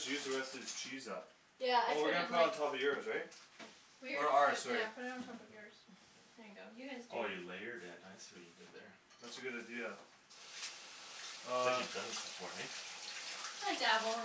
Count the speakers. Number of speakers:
three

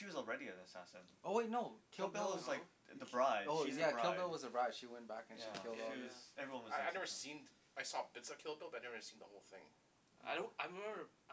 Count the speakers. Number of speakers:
four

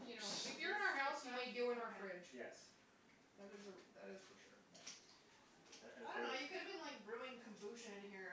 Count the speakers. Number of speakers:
three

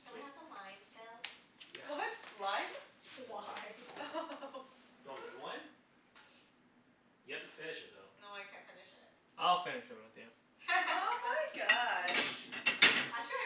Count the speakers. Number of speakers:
four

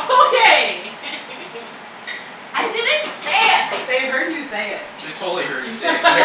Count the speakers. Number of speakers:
three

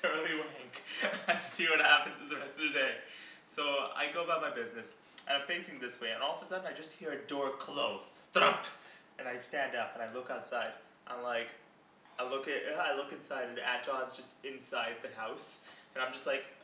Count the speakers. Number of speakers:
one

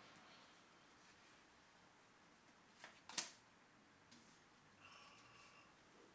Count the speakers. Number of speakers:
zero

